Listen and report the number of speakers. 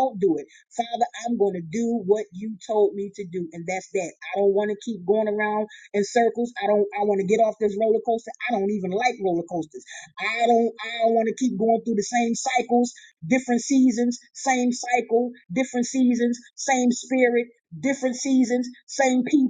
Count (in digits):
1